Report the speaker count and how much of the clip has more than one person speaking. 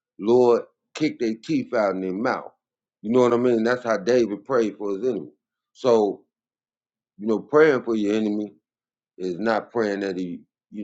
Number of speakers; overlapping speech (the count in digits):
1, no overlap